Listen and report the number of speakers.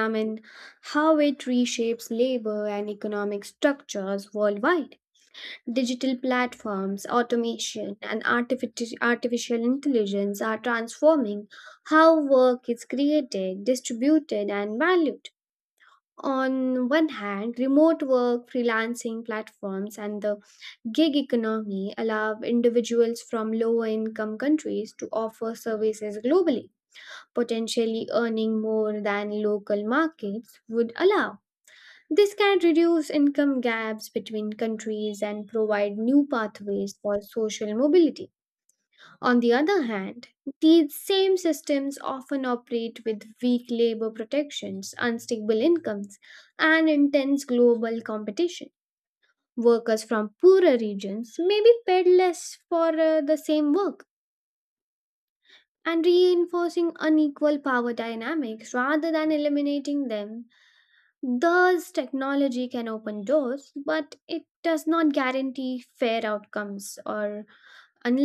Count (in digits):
1